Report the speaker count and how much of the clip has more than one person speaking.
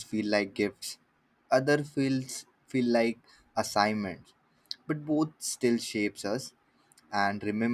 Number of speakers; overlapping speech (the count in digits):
1, no overlap